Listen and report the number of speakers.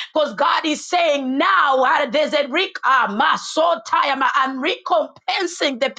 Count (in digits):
1